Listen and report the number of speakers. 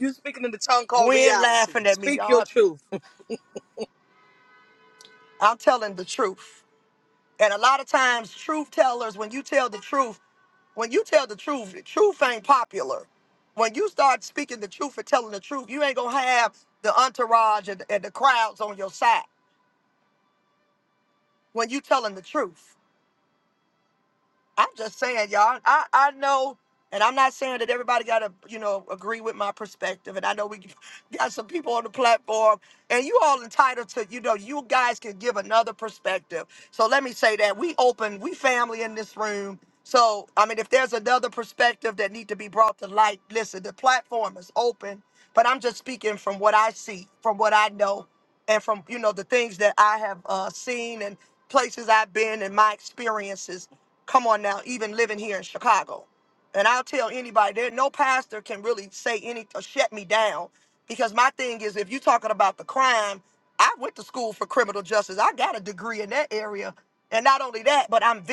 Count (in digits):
2